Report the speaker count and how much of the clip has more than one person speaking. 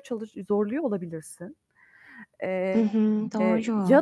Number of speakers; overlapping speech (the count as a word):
two, about 10%